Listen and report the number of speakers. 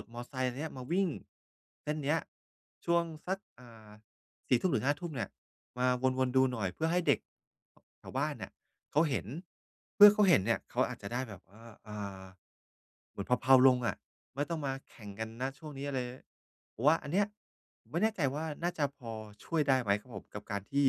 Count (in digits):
1